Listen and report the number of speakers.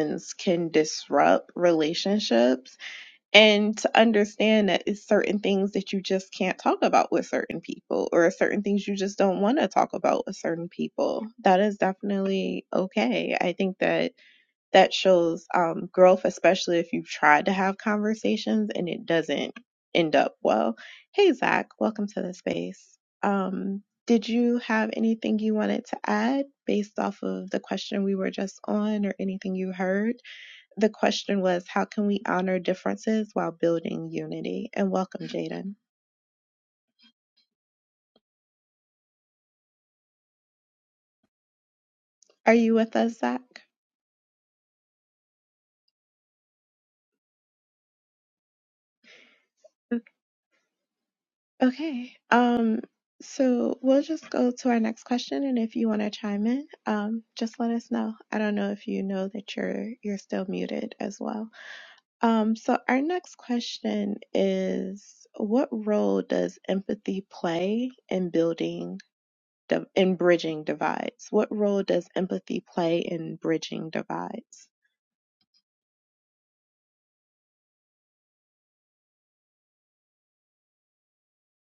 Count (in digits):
1